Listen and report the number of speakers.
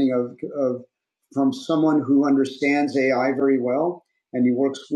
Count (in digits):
1